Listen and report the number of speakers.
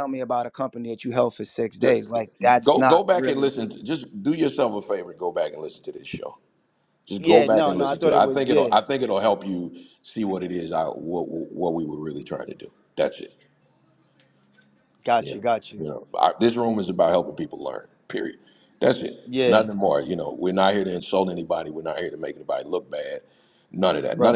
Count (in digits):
2